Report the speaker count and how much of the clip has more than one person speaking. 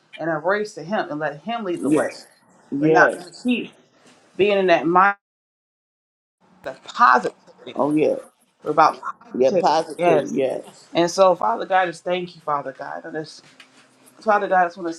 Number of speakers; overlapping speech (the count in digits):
2, about 12%